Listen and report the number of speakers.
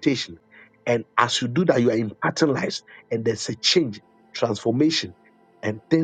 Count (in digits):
1